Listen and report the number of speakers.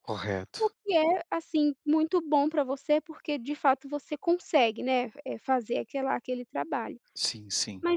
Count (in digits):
2